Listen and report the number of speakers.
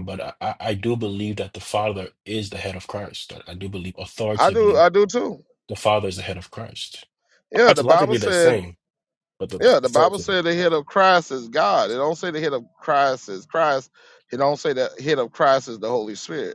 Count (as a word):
two